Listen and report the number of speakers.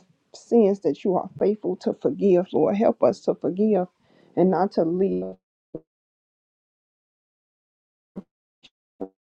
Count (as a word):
one